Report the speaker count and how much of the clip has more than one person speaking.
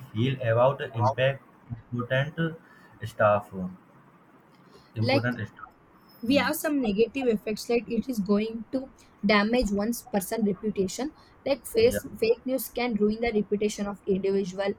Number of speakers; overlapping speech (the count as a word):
two, about 4%